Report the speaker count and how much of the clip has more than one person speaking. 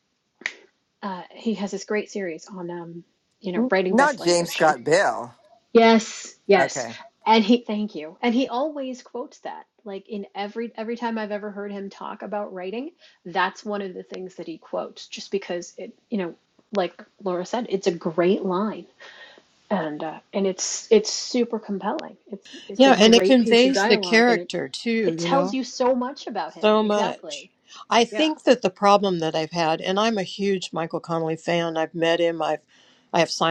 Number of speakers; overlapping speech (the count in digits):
3, about 14%